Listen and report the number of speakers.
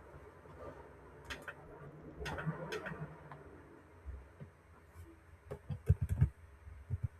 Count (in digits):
0